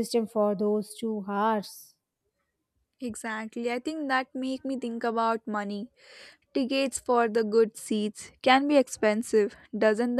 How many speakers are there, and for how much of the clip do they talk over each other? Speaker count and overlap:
2, no overlap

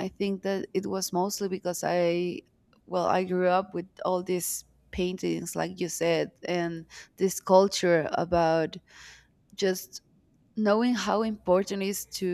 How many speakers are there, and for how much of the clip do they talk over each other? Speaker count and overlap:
1, no overlap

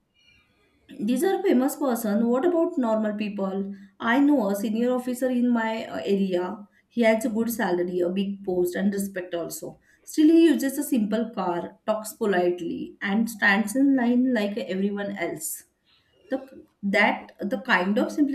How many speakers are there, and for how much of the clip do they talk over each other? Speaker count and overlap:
1, no overlap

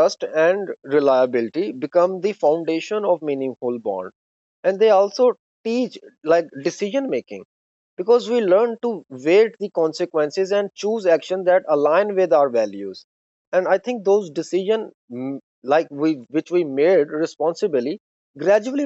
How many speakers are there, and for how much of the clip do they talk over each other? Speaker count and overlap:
1, no overlap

